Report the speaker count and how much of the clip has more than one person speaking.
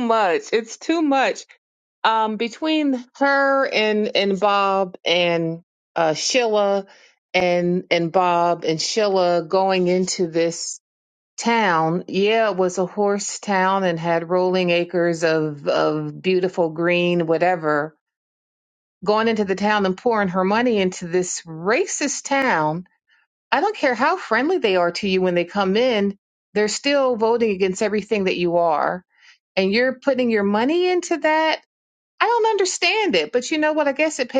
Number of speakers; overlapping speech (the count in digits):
1, no overlap